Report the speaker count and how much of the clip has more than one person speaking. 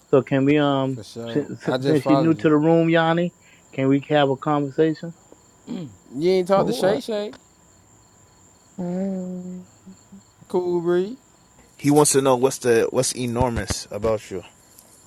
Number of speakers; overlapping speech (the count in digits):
4, about 11%